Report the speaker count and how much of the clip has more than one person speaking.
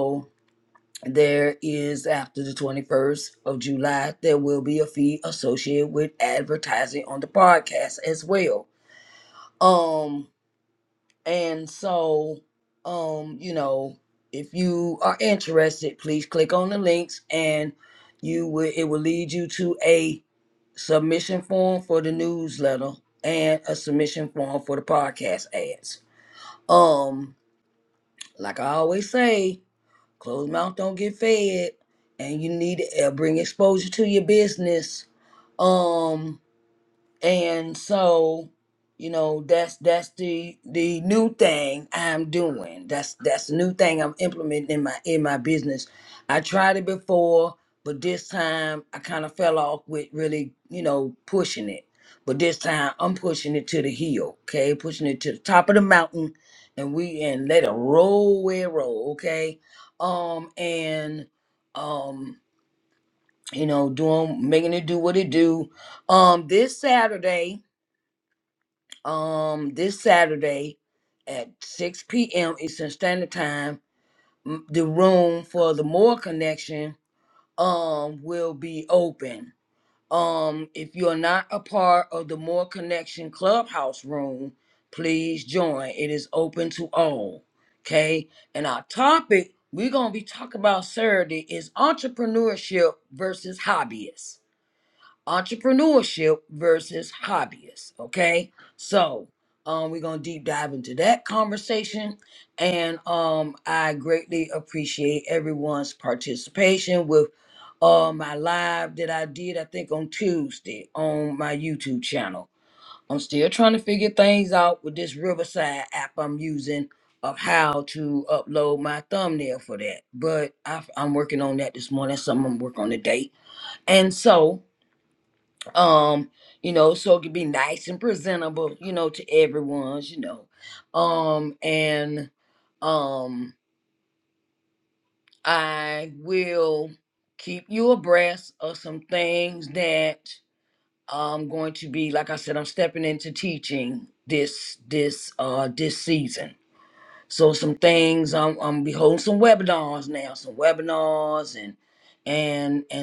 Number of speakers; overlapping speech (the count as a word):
one, no overlap